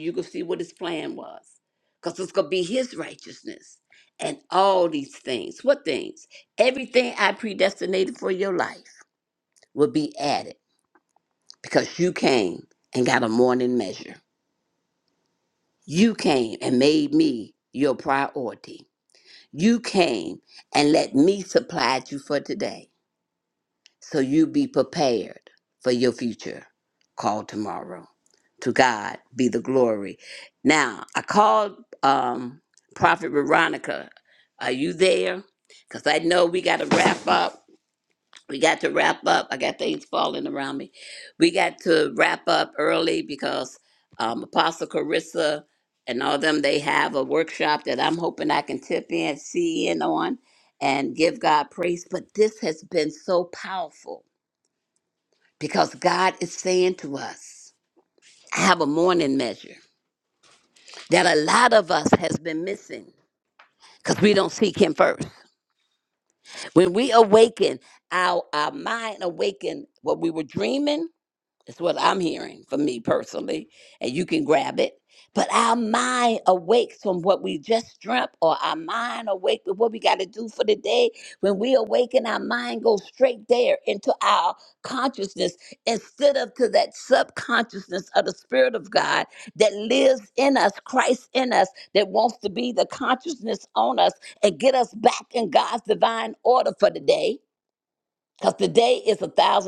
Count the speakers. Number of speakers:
1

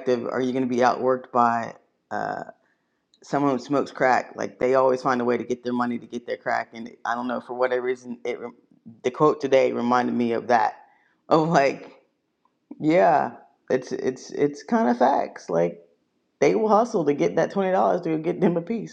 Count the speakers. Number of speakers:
1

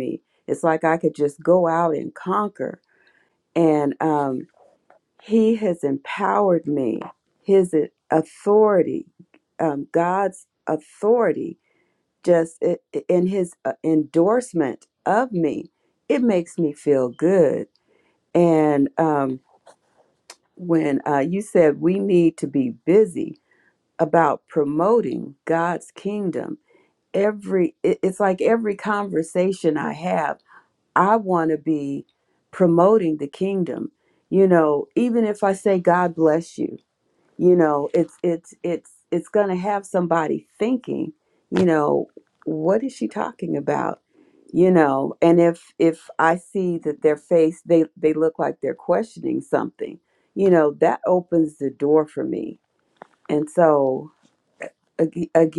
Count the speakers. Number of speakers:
1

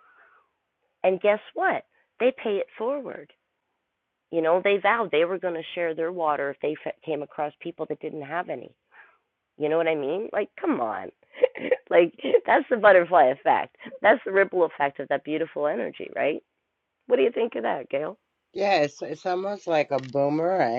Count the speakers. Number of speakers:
2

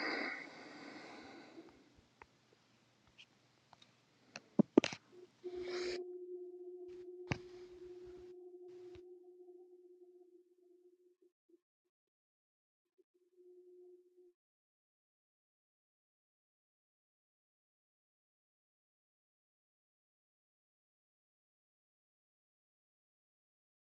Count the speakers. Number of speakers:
0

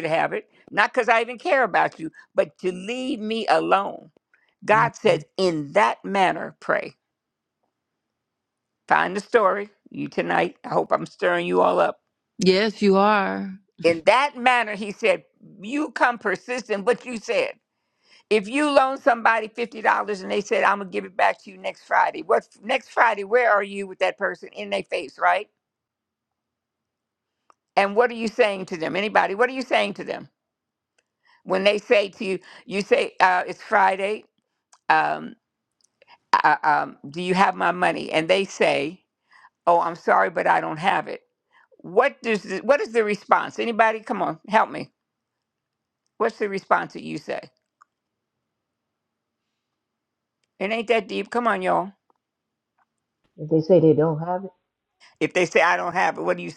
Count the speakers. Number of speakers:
3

